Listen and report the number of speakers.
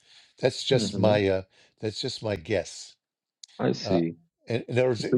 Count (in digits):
2